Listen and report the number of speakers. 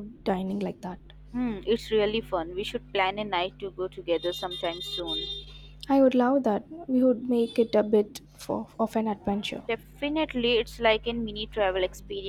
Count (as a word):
two